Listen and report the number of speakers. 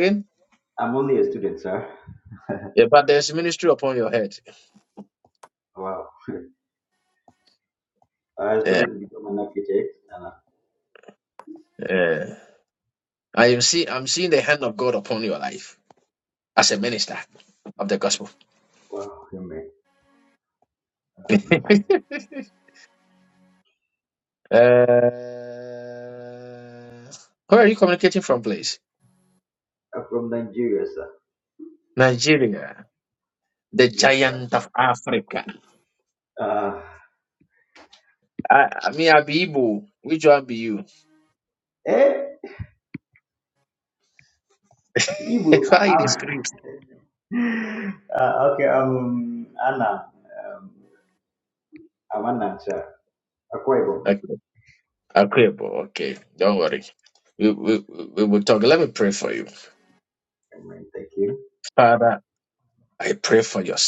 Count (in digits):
2